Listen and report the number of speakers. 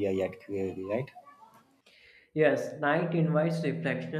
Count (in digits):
2